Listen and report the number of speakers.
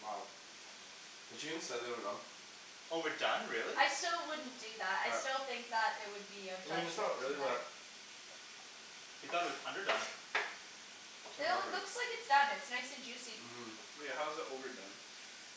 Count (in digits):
4